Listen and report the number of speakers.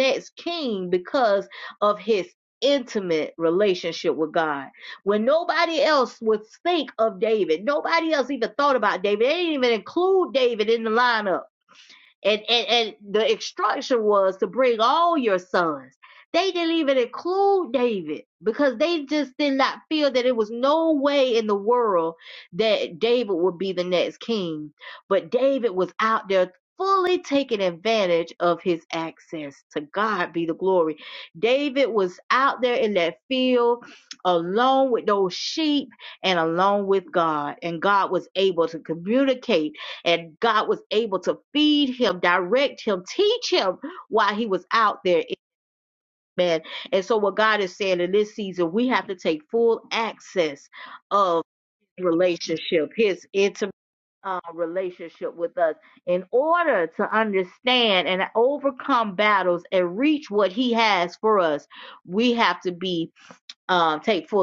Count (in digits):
1